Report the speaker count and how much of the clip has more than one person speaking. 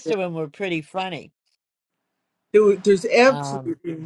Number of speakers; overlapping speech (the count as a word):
two, about 10%